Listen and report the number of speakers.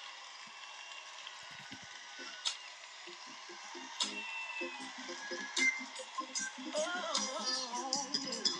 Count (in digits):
0